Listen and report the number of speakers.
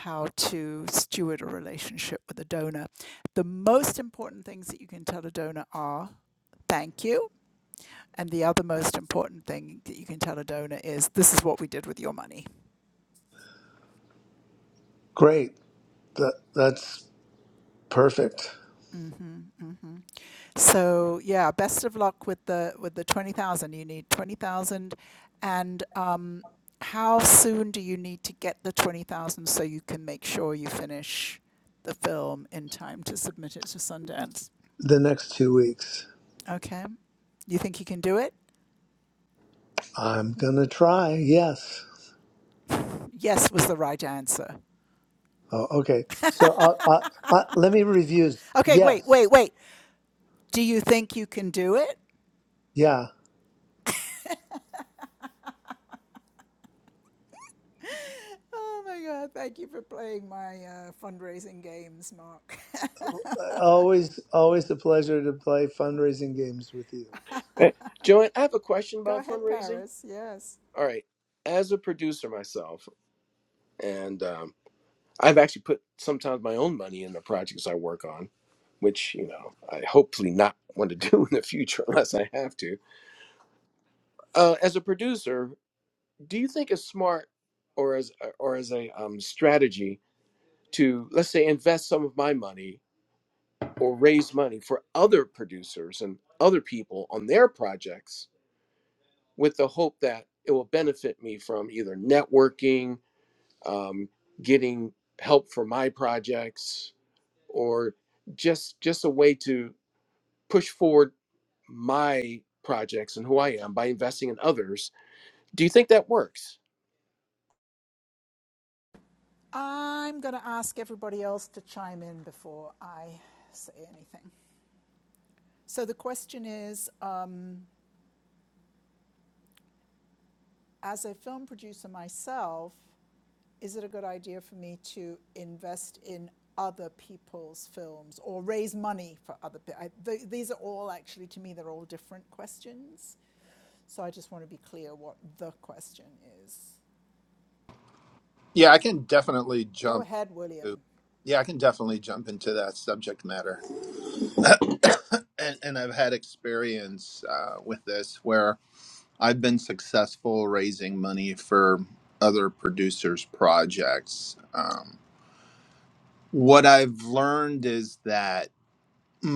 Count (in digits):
4